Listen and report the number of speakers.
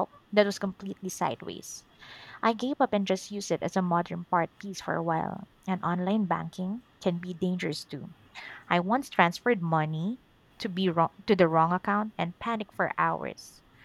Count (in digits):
1